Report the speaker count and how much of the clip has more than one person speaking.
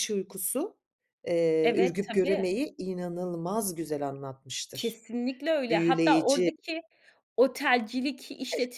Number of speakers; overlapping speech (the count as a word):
two, about 21%